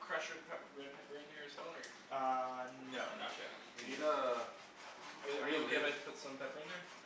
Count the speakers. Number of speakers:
3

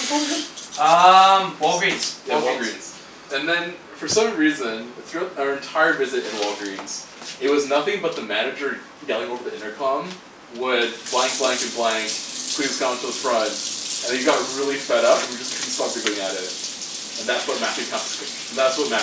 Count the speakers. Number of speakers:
2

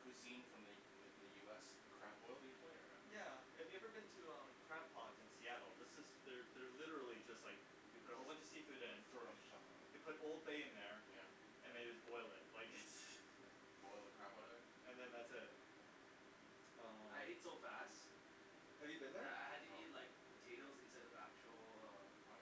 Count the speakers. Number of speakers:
3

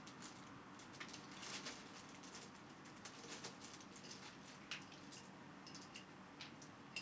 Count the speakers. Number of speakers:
0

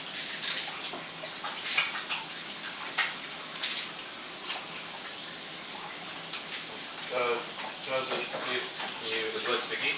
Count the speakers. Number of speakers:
1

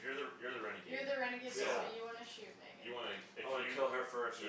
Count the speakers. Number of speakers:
3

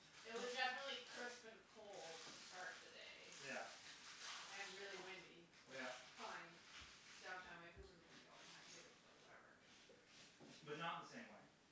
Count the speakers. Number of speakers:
2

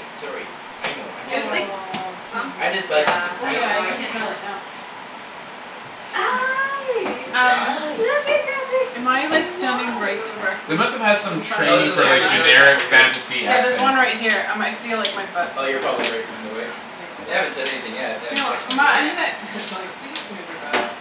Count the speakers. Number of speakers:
4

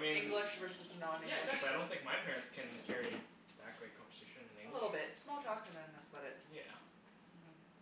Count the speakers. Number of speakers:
2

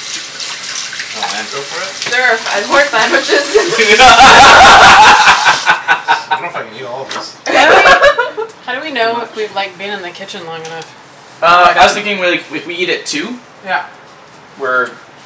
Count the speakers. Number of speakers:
4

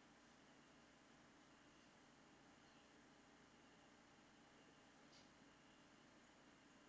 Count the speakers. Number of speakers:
0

